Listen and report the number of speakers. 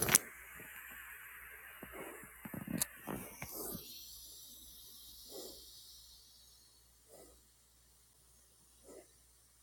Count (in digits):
0